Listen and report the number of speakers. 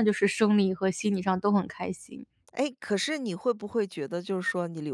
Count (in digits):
2